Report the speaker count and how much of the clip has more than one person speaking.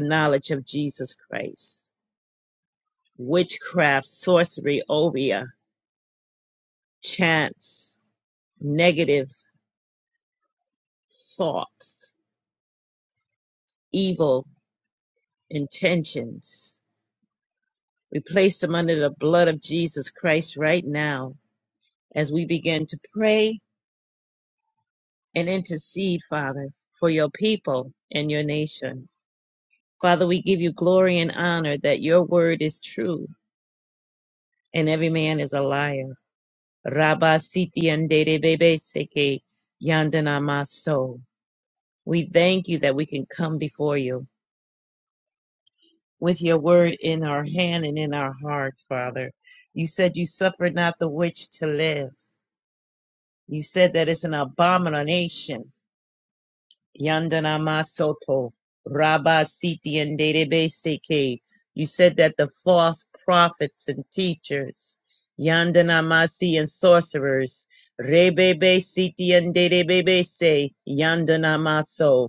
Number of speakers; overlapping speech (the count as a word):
one, no overlap